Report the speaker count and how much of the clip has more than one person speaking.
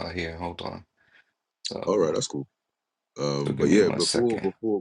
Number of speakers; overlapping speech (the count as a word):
two, about 27%